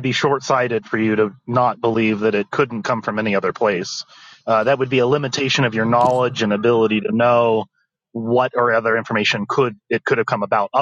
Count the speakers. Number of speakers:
1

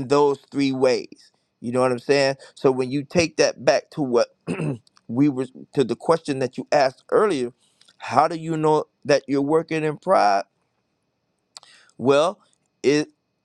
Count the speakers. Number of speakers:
1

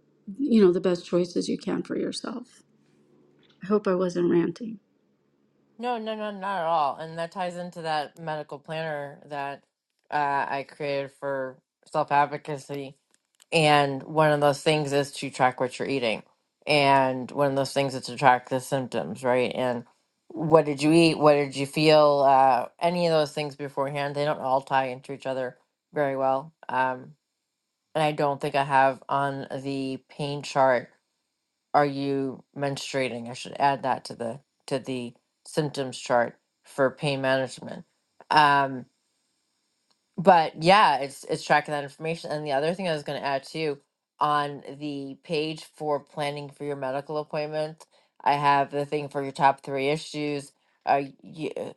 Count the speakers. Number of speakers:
2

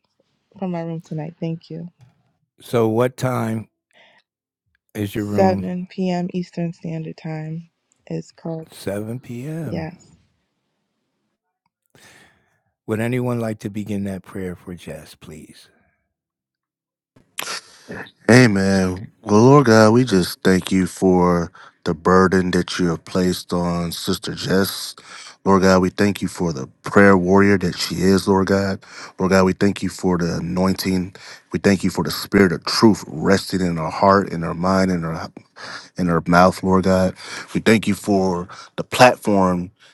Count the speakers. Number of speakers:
3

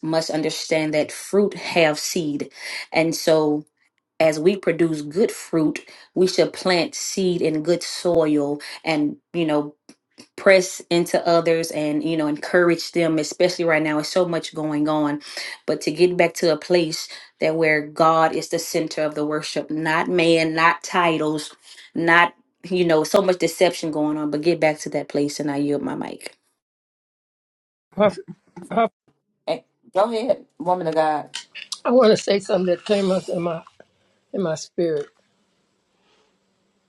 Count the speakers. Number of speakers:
3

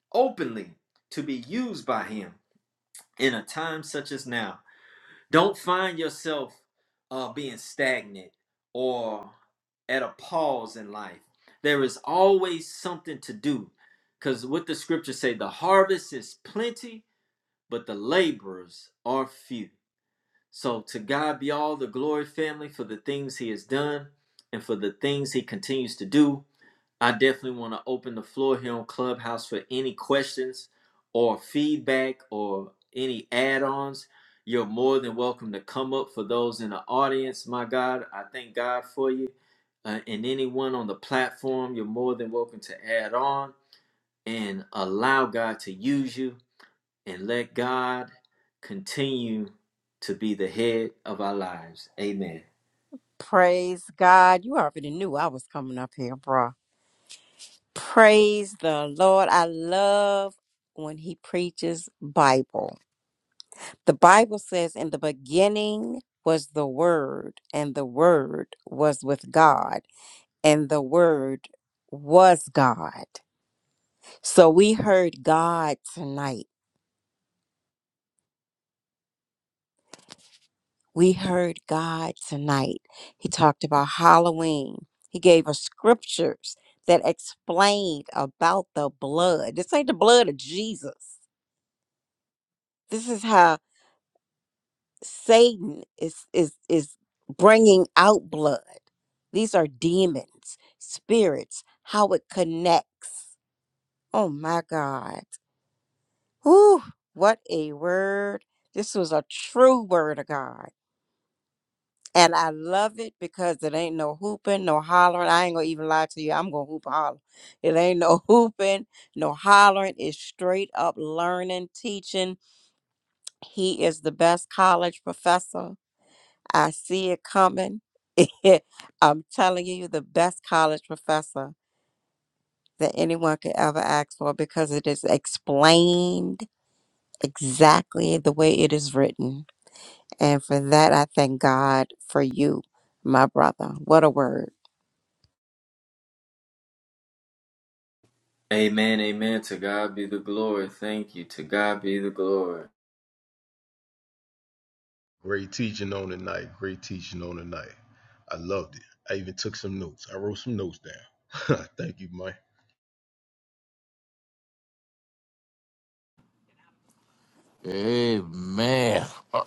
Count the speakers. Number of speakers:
4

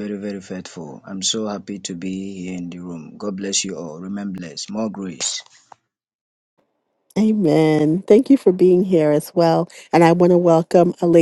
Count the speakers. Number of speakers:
2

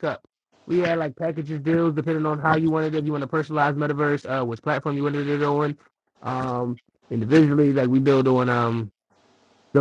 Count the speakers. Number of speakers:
1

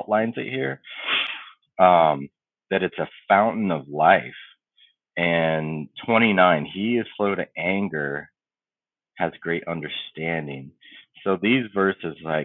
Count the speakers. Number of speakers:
1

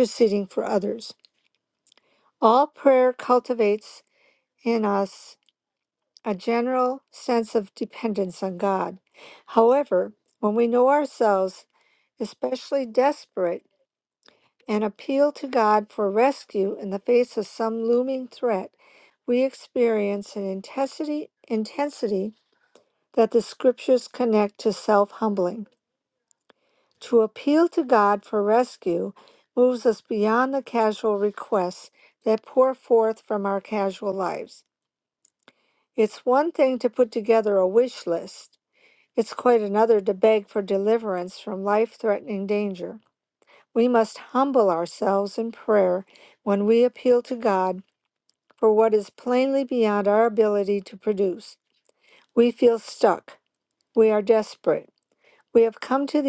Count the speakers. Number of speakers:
1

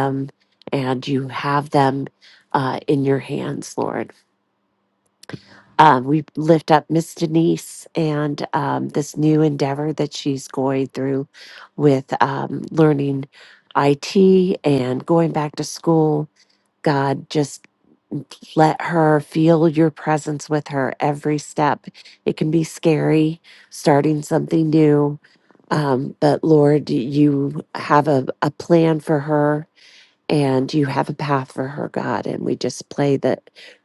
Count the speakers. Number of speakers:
1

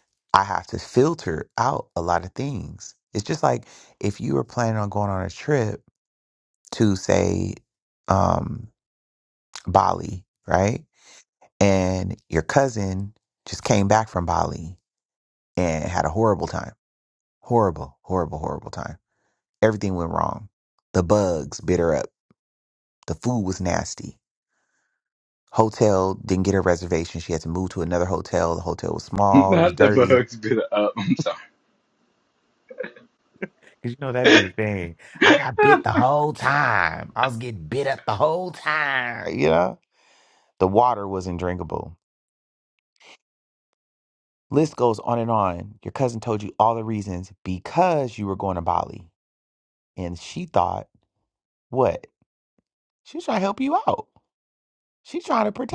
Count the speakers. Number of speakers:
2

